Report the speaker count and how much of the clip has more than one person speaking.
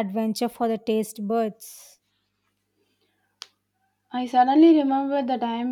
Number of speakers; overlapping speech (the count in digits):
2, no overlap